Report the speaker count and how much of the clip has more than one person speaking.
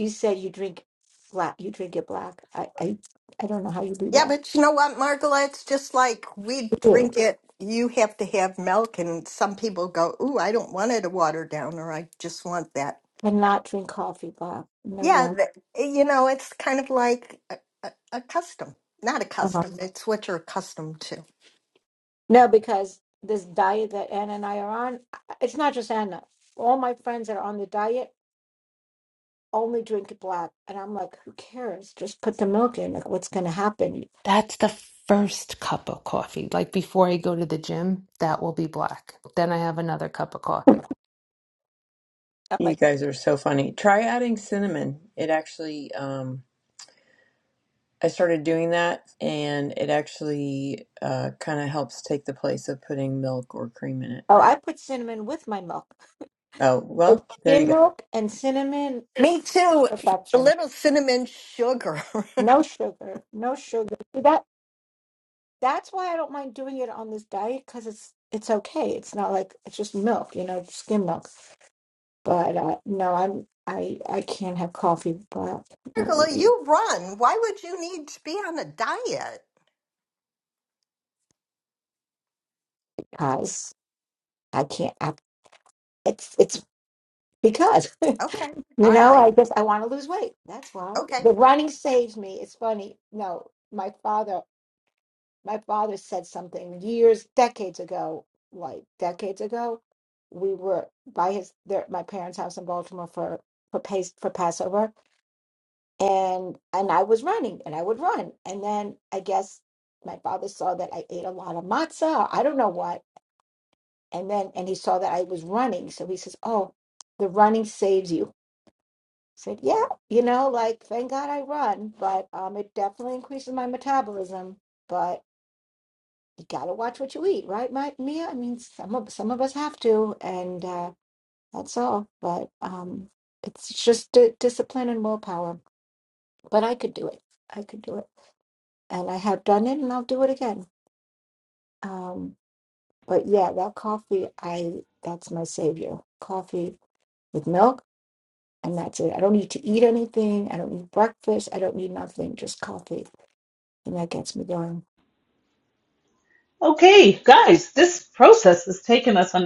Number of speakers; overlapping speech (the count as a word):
five, about 2%